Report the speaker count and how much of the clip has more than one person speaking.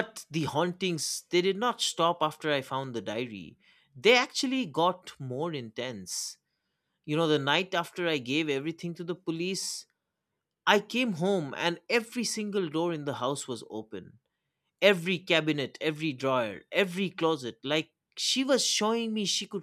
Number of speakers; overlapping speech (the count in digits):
1, no overlap